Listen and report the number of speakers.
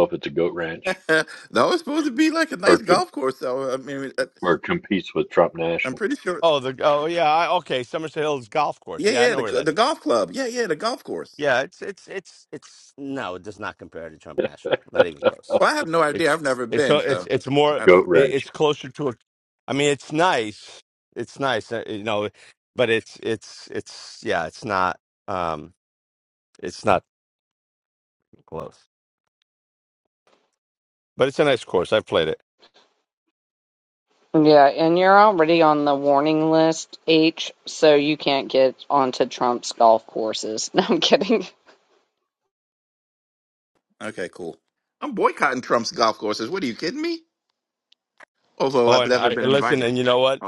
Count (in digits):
4